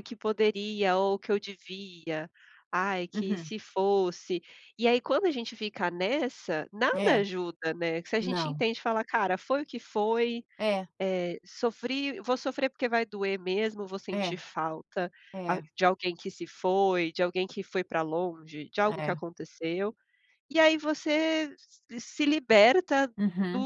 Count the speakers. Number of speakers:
two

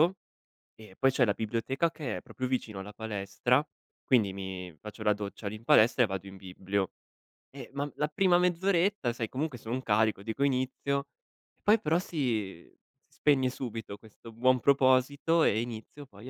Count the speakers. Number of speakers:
one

